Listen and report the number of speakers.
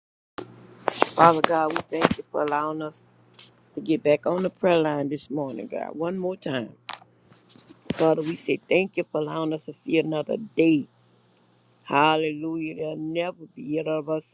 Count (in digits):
1